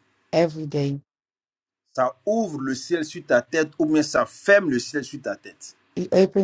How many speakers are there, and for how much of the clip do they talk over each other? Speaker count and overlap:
two, no overlap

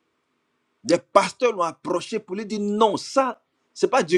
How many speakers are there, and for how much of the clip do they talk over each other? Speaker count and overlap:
one, no overlap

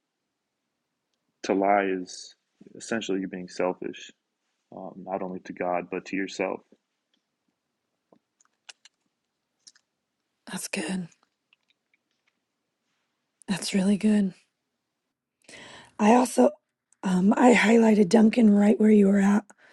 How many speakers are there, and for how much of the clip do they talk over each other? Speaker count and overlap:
two, no overlap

